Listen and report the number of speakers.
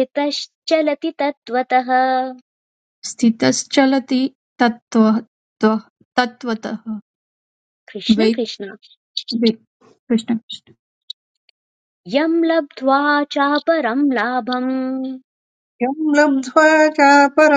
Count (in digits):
3